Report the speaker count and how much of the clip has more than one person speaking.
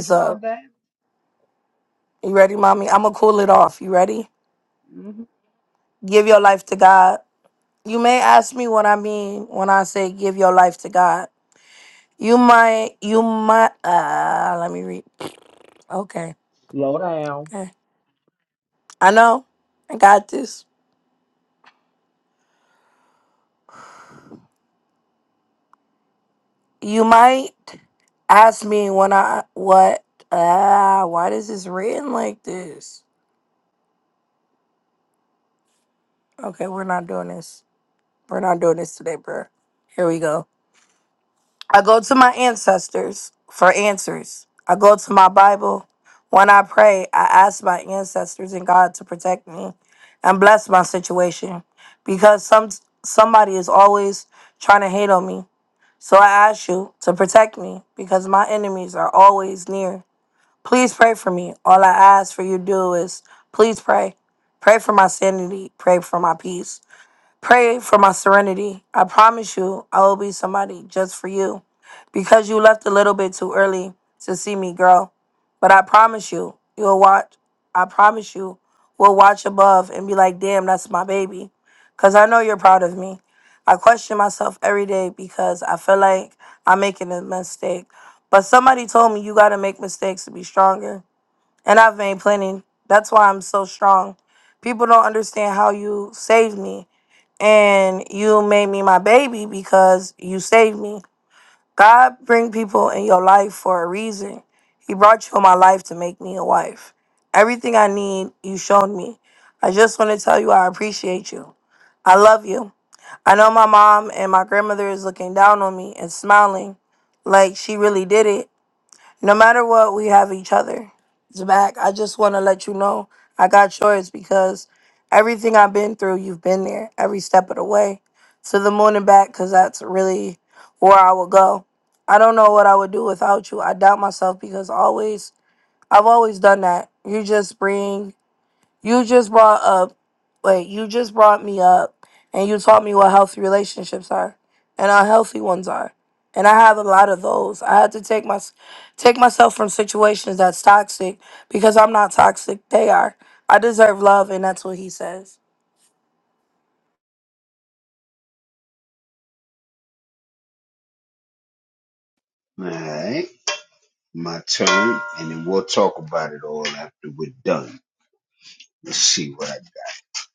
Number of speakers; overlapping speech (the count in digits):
3, under 1%